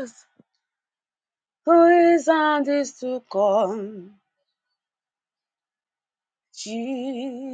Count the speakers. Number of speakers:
one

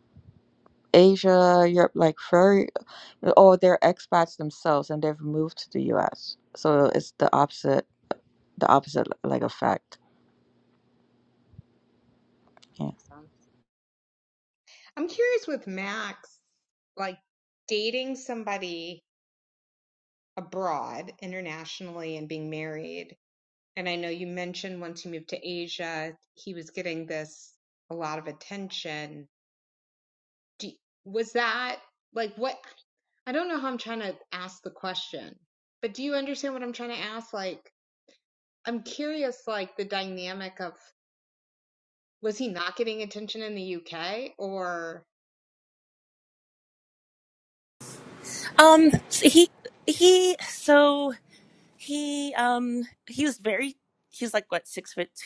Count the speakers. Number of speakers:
three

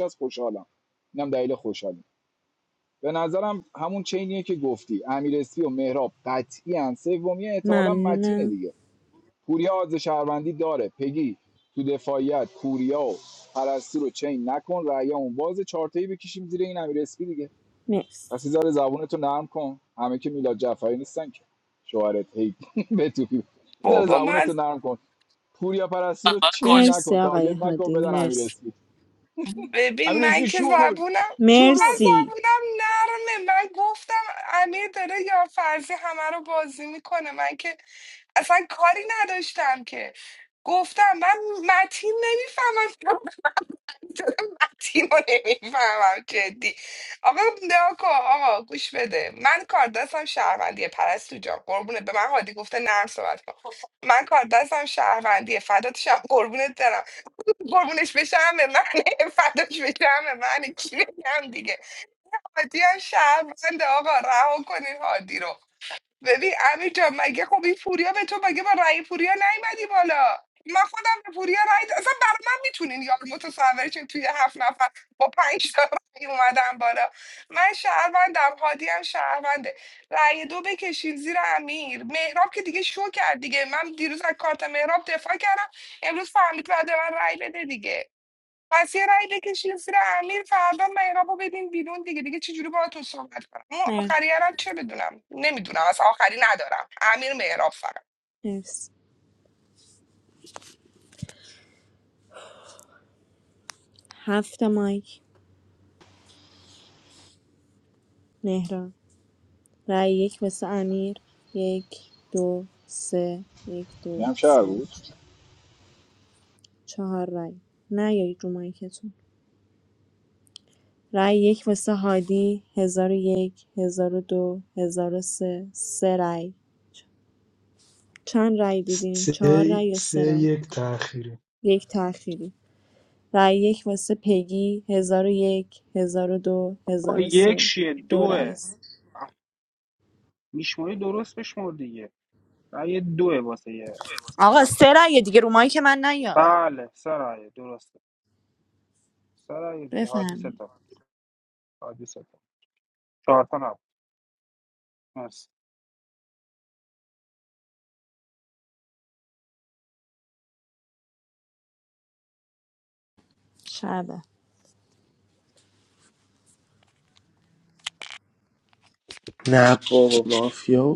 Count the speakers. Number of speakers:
six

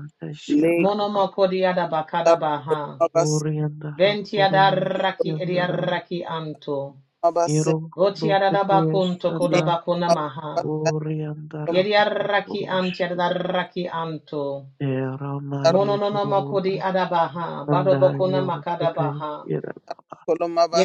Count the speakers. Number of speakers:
three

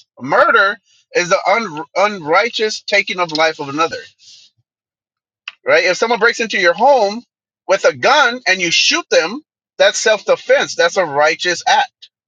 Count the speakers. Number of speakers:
one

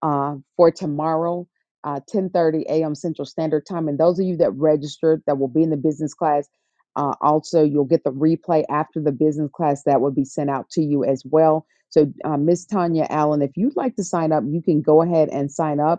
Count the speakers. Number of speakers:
one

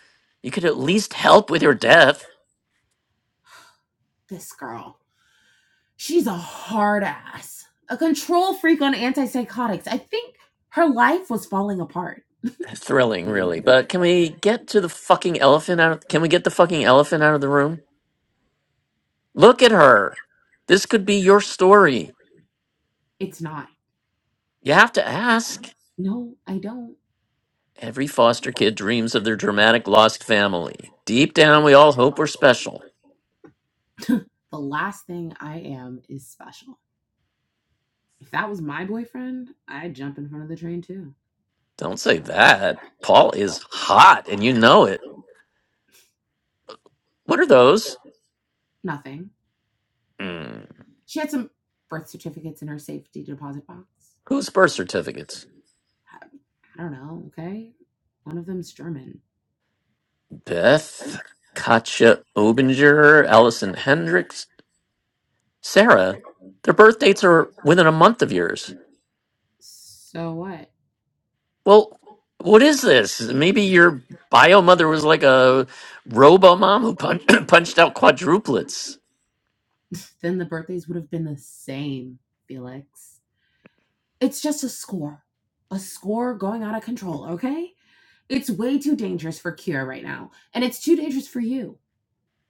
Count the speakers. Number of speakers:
two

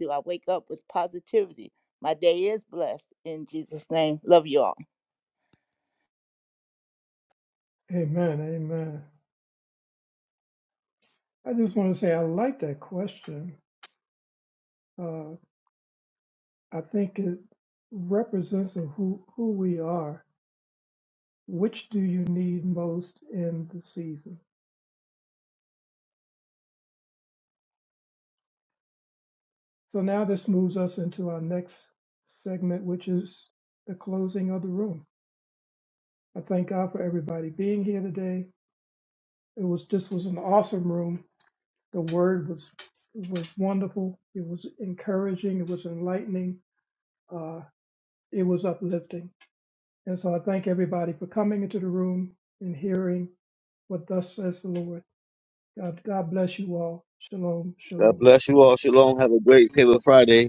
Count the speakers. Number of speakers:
three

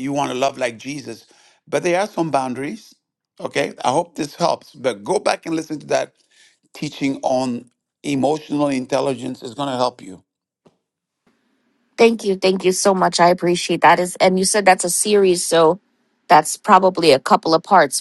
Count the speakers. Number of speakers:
two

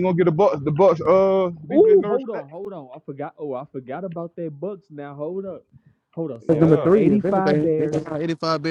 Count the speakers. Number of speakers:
three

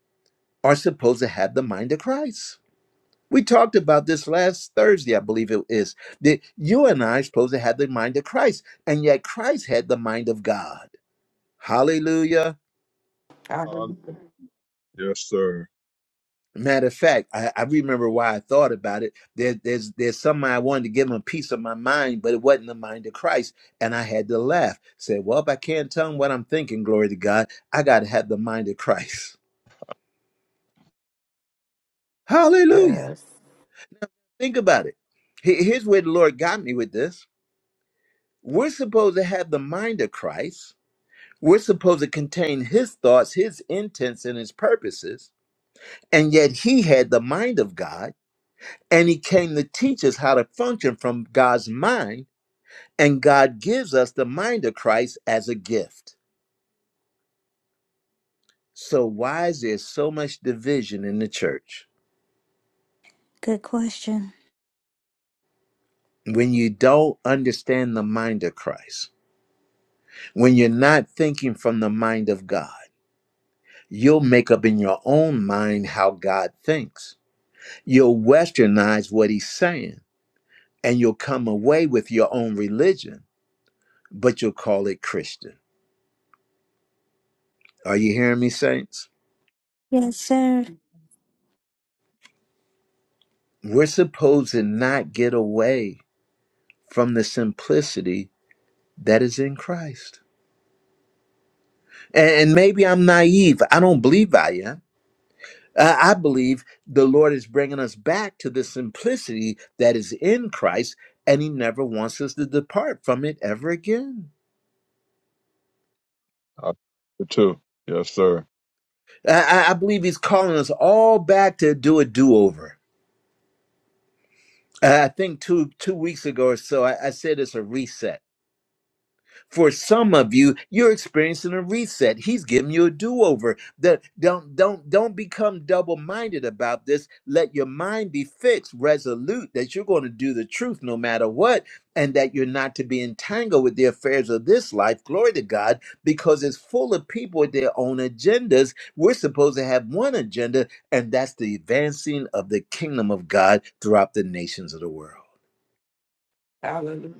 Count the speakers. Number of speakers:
four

